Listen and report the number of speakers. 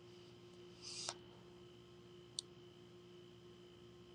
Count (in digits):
0